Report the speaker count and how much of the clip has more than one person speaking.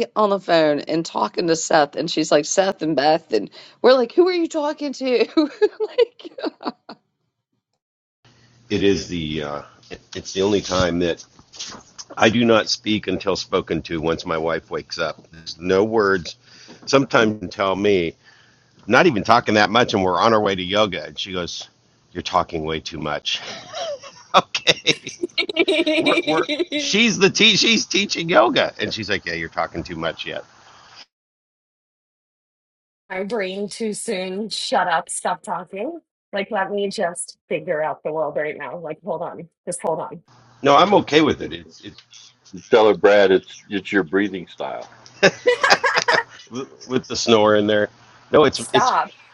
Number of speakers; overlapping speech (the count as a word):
four, under 1%